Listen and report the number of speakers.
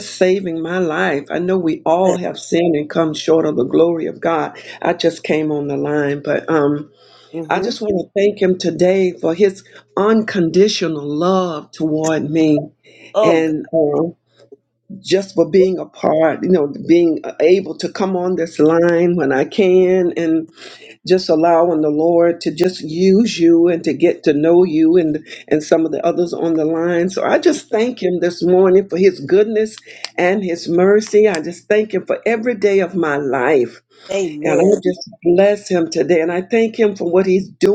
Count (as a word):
two